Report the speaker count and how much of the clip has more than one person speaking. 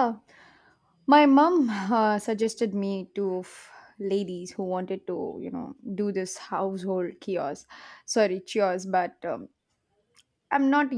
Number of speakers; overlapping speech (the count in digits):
1, no overlap